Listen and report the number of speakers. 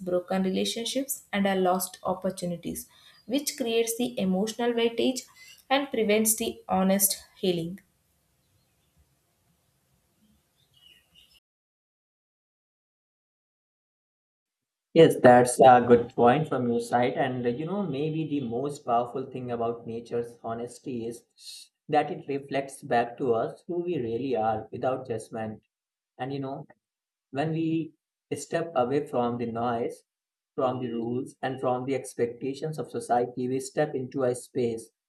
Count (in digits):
2